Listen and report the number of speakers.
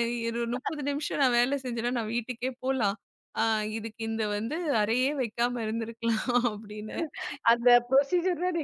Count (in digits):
2